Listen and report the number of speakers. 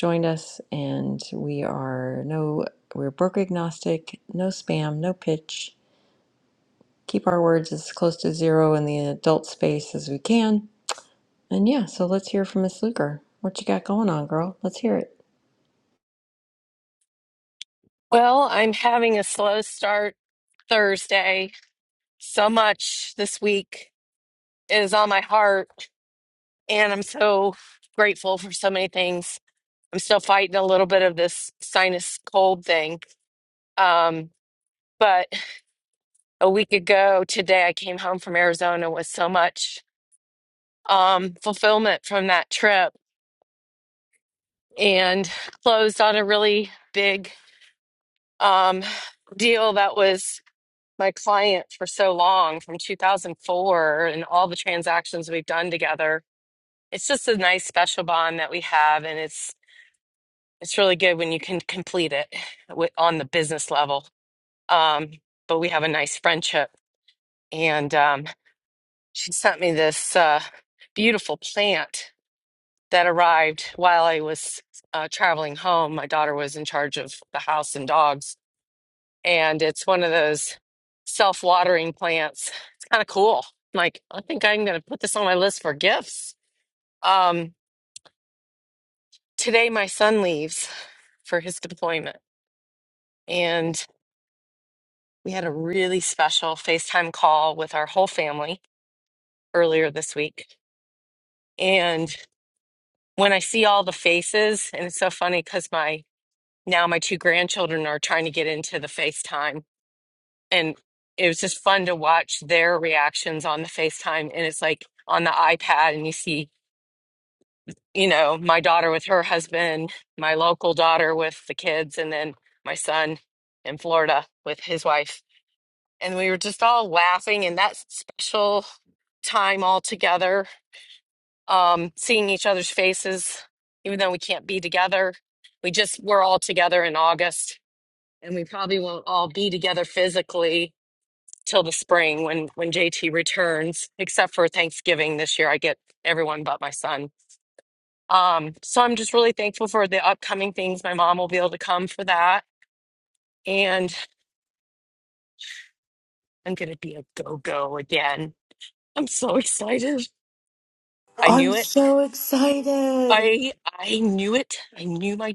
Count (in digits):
3